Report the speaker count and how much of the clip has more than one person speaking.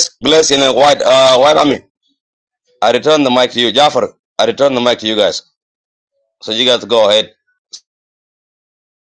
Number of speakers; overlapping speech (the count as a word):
one, no overlap